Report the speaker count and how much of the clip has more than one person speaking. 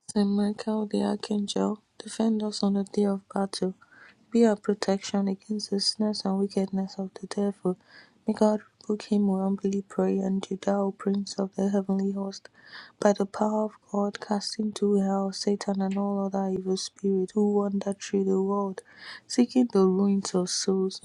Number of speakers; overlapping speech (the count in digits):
1, no overlap